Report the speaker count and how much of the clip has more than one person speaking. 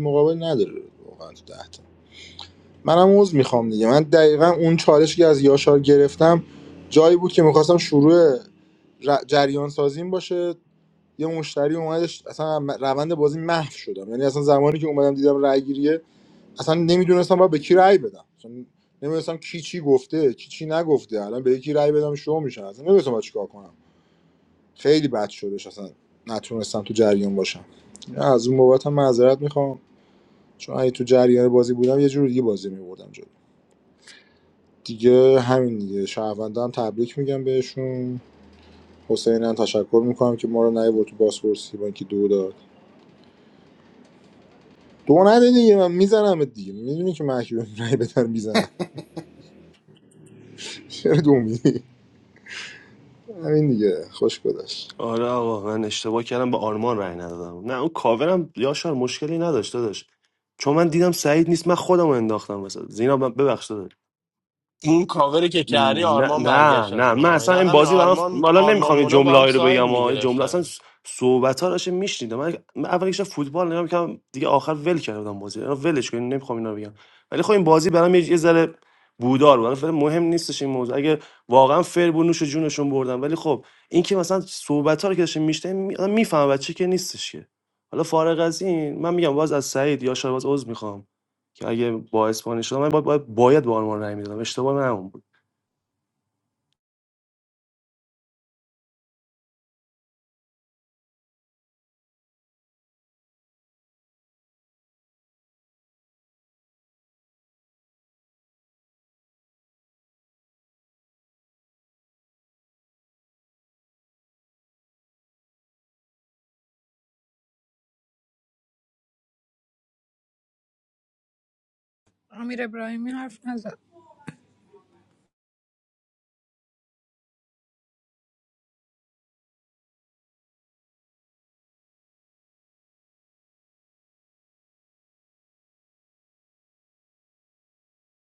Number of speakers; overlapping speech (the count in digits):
4, about 4%